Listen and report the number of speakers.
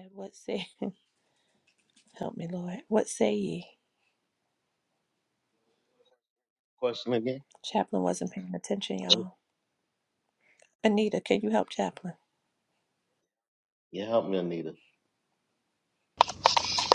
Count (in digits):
2